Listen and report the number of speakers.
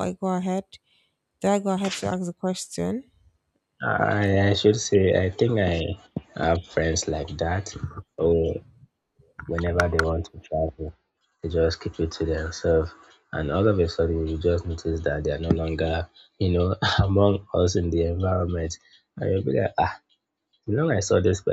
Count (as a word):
two